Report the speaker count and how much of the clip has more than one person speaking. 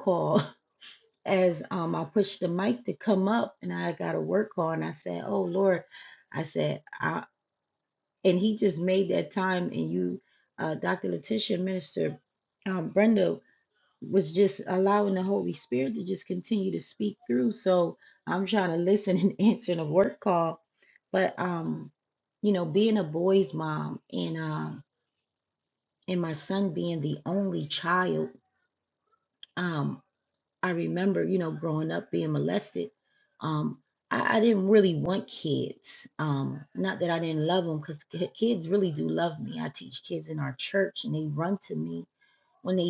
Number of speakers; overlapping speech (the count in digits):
1, no overlap